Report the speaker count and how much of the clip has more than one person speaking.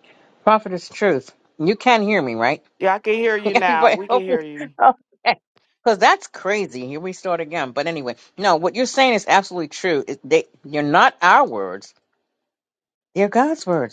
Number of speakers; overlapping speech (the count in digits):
2, about 4%